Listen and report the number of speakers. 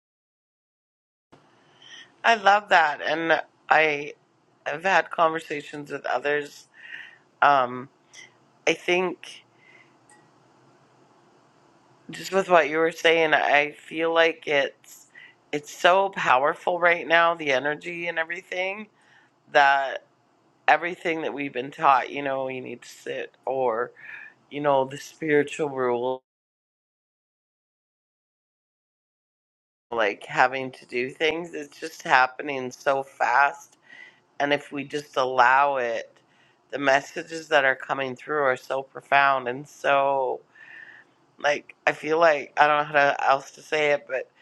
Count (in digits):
1